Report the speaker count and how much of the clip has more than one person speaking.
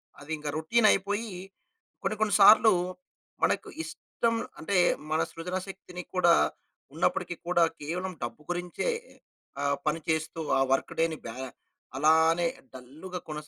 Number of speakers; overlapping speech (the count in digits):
1, no overlap